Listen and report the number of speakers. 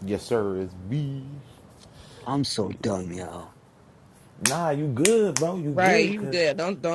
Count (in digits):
3